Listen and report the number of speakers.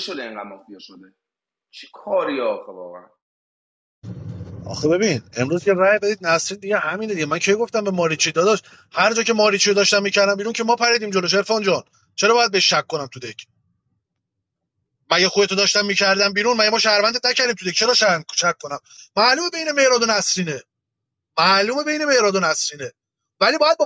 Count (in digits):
2